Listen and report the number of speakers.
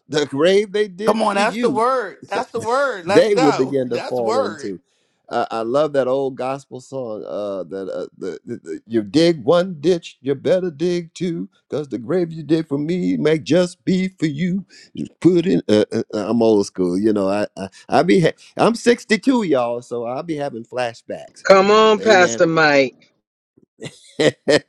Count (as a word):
three